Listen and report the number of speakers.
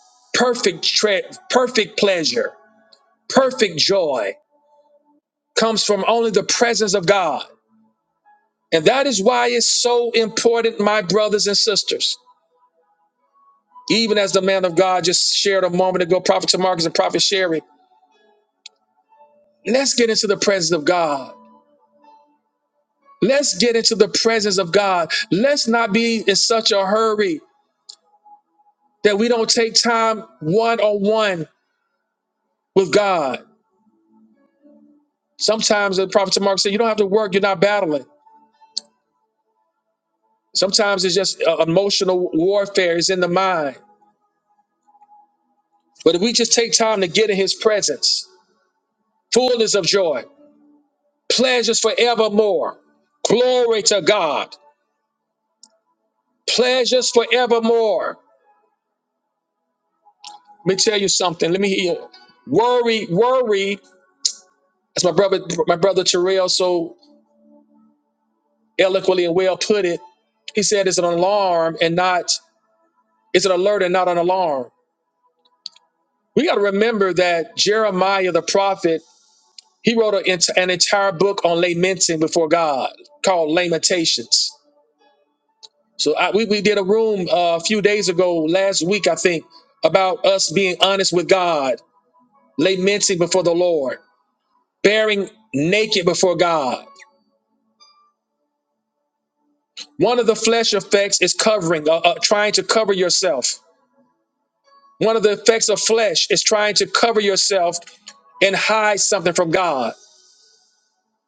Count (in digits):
1